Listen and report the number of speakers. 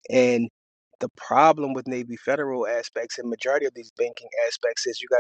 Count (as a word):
one